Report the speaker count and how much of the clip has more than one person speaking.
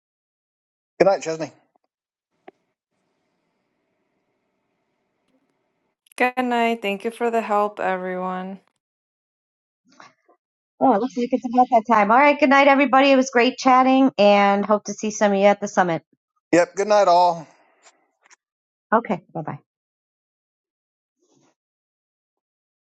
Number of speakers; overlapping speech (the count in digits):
3, no overlap